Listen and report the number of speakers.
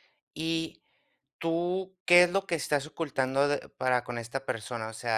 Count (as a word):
one